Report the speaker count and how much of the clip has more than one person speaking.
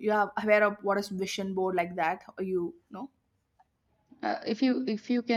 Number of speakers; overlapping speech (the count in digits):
2, no overlap